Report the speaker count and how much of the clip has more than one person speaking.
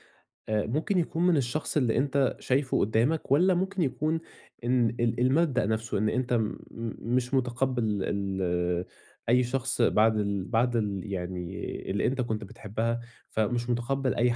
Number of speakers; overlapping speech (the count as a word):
one, no overlap